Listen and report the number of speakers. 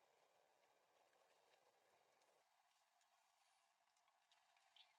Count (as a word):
zero